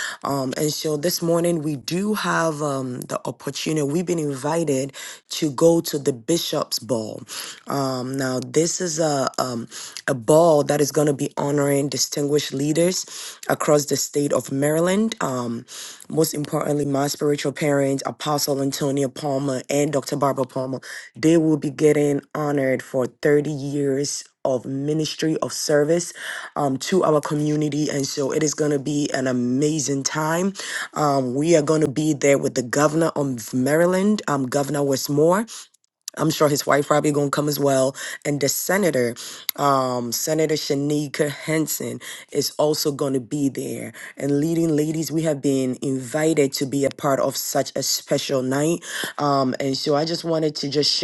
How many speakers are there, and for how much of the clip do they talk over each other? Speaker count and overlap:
1, no overlap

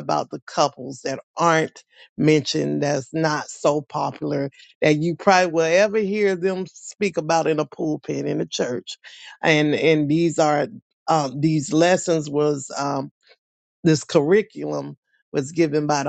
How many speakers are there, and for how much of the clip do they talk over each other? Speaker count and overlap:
1, no overlap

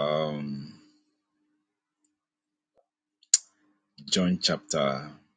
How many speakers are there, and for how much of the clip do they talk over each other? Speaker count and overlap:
1, no overlap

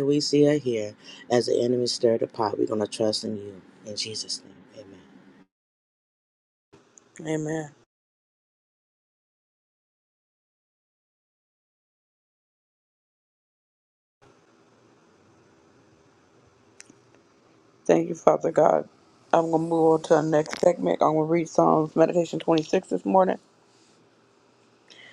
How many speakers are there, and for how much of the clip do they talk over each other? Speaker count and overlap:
2, no overlap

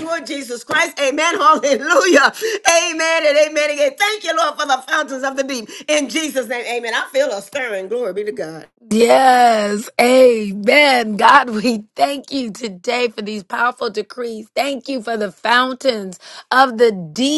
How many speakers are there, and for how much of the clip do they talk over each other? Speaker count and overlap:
2, no overlap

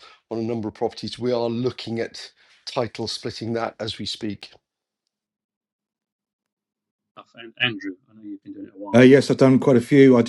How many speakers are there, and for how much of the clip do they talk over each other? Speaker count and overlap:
3, about 1%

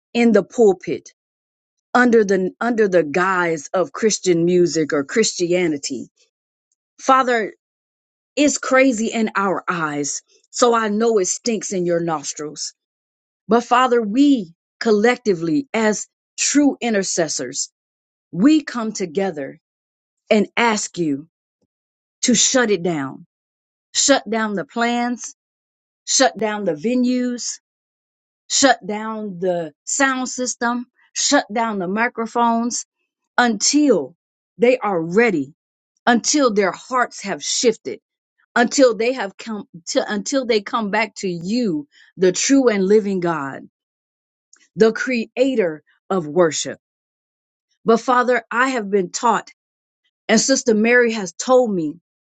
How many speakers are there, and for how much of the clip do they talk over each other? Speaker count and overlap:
1, no overlap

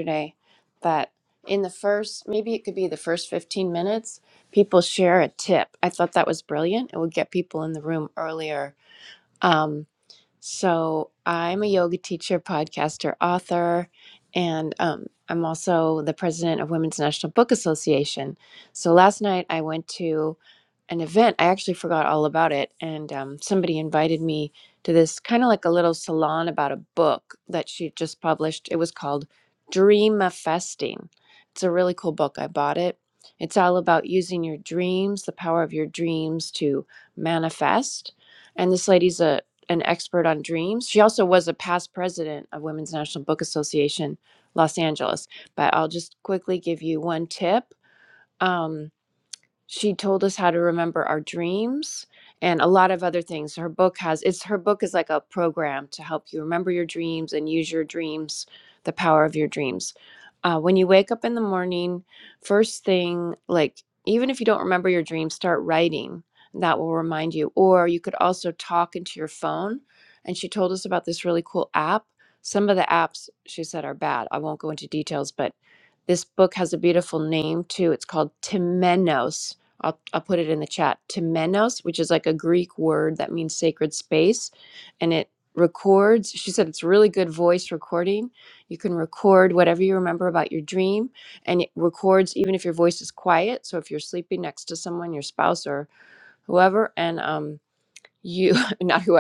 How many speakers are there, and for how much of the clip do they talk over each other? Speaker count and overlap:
1, no overlap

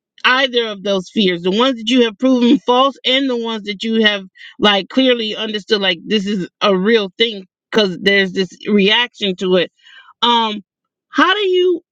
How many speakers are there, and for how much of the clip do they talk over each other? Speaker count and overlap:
1, no overlap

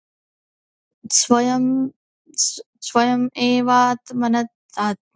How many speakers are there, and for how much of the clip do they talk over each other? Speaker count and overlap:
1, no overlap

